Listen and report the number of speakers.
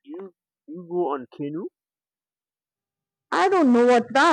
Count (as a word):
two